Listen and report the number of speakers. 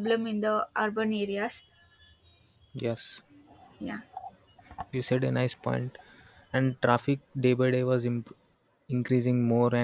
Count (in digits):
2